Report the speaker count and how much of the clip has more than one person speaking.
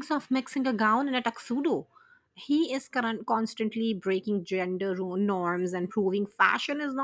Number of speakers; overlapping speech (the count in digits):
1, no overlap